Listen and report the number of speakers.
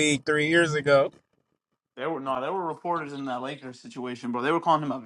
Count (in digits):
2